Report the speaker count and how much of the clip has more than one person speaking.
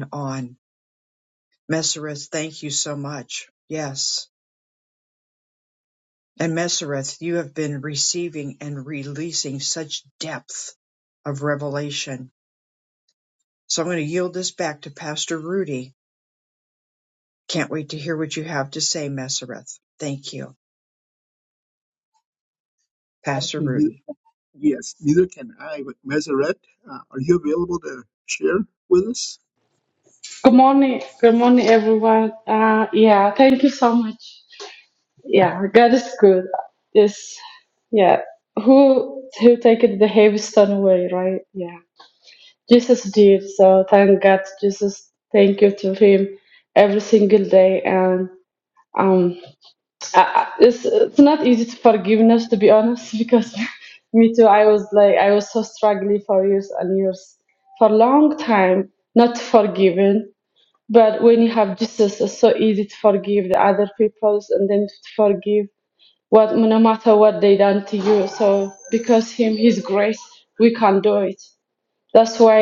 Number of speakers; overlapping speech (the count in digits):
3, about 1%